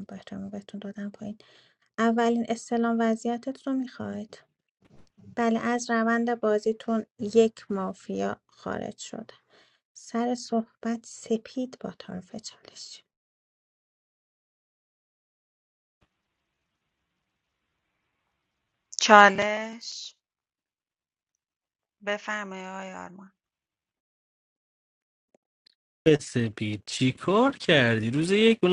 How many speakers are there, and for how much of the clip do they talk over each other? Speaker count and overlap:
three, no overlap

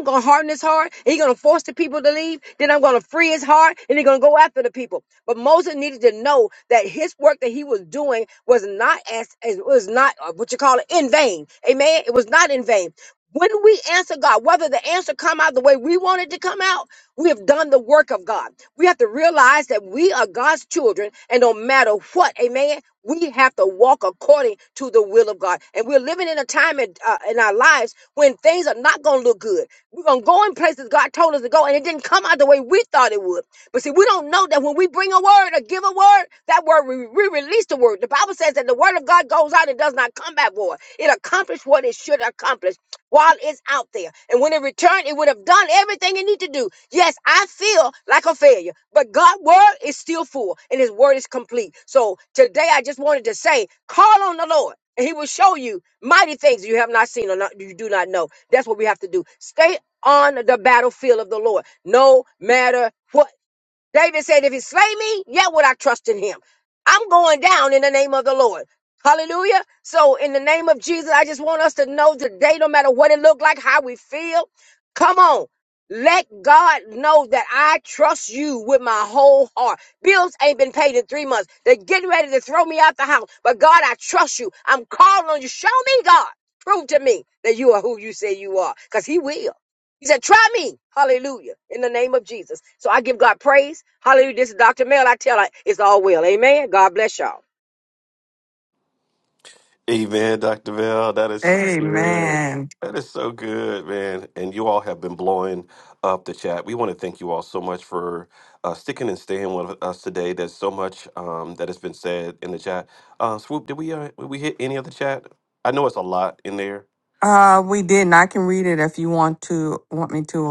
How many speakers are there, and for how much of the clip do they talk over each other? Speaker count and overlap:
three, about 1%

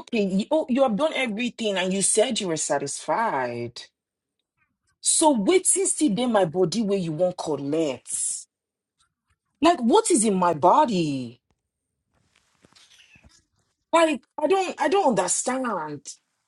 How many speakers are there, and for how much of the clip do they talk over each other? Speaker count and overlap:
one, no overlap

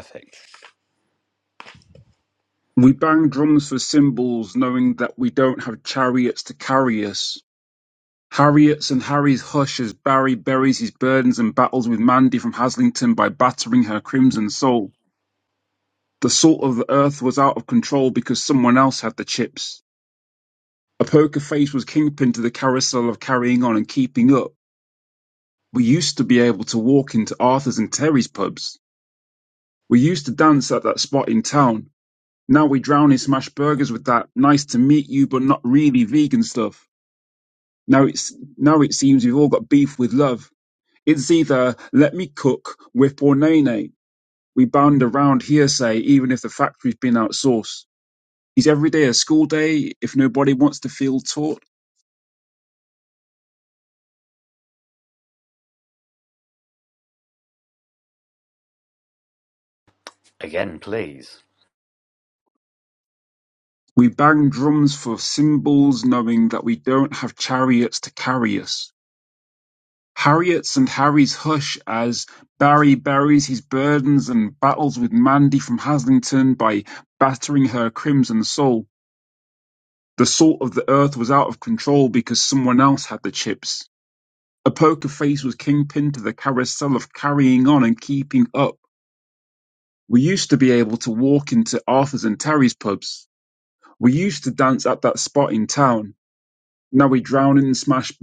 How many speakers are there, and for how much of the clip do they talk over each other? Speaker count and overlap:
two, no overlap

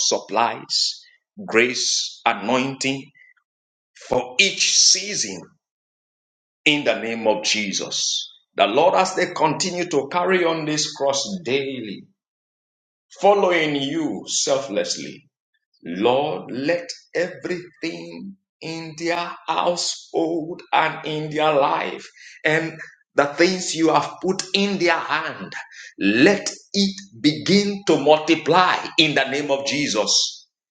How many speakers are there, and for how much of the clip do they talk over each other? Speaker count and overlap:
one, no overlap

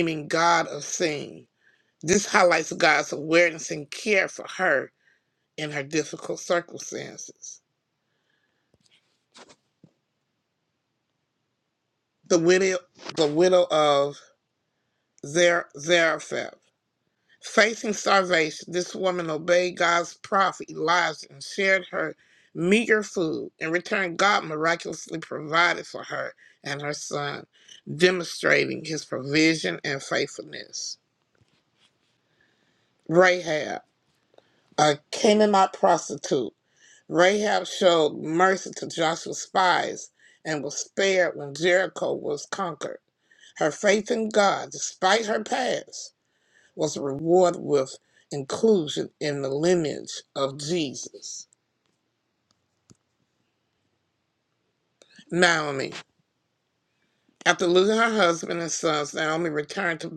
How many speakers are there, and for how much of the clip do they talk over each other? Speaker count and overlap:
one, no overlap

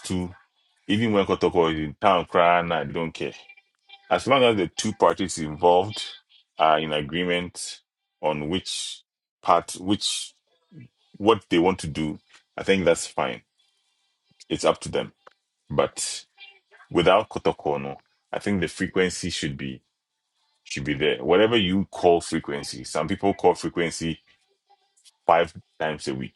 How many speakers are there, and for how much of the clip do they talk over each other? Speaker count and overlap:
one, no overlap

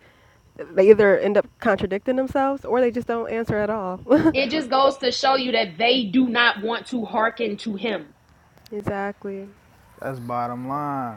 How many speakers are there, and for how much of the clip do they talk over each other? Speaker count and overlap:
three, no overlap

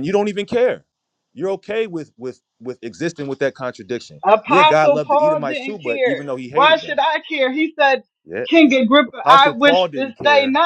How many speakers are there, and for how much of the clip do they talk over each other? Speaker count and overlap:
two, about 36%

